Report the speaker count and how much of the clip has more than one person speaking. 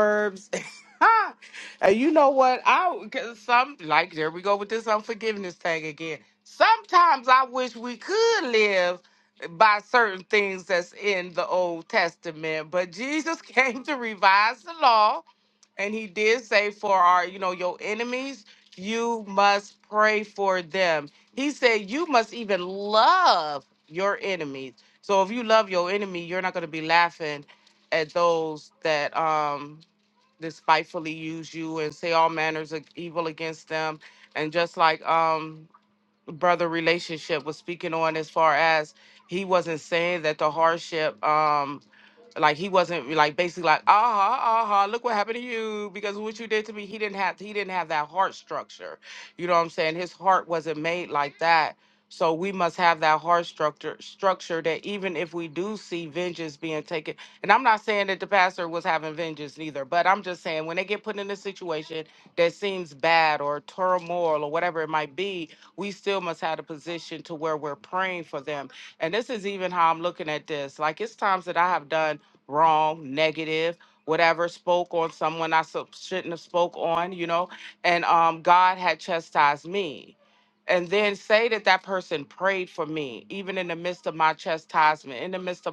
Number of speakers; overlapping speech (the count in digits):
1, no overlap